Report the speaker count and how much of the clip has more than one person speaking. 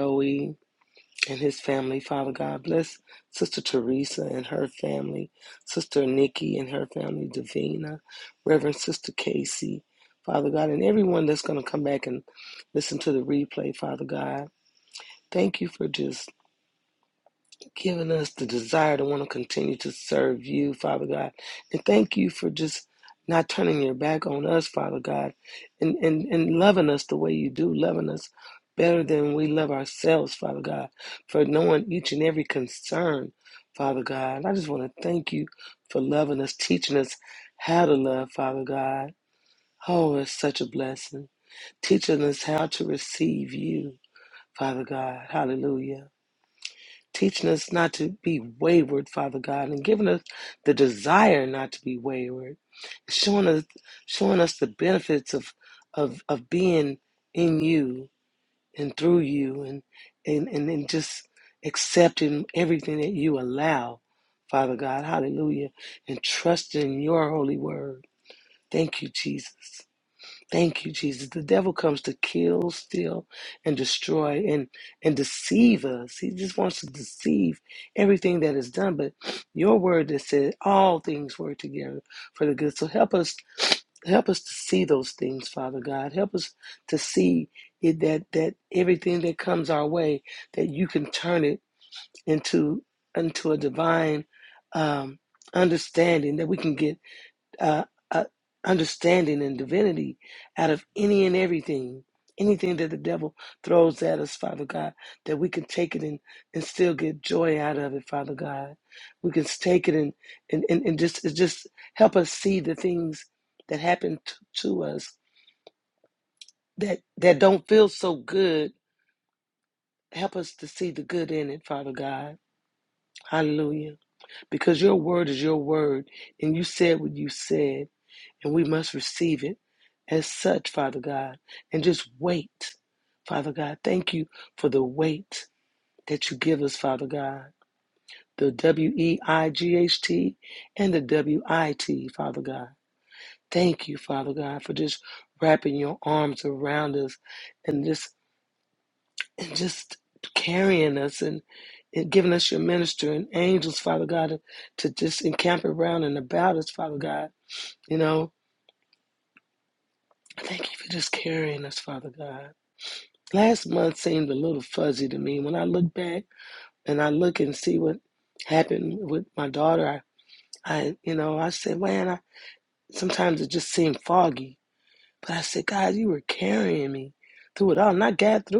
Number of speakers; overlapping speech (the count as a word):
one, no overlap